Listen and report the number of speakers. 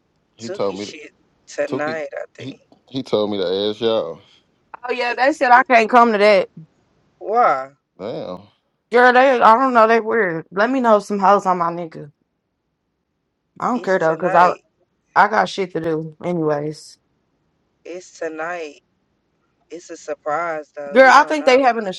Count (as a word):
three